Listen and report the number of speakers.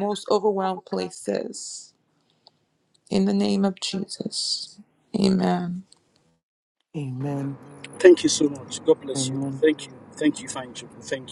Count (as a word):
three